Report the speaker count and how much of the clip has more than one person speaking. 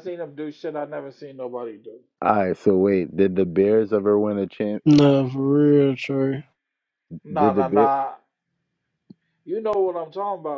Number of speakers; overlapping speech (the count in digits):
3, about 6%